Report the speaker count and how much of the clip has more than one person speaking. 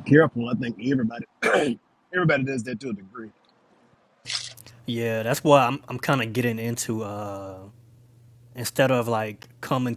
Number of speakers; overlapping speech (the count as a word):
two, no overlap